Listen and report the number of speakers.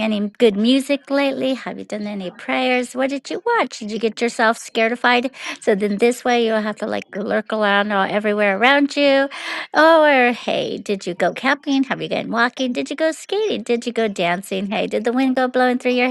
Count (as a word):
one